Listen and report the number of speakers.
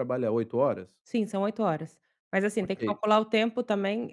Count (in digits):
2